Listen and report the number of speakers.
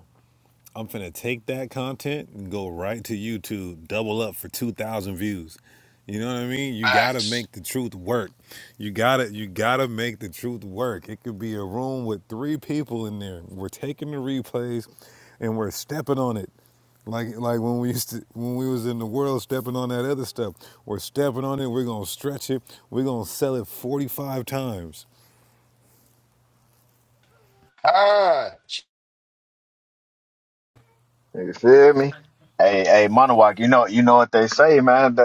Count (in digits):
3